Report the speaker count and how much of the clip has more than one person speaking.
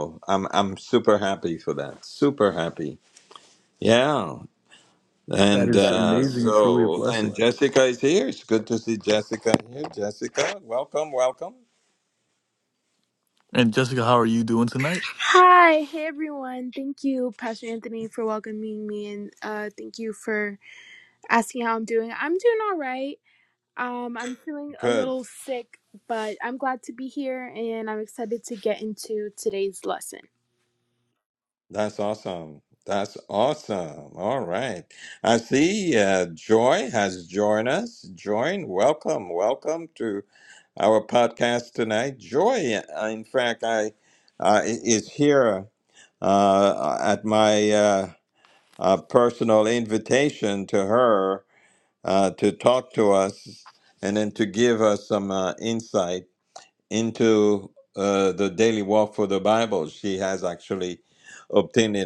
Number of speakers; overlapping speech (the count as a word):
three, about 3%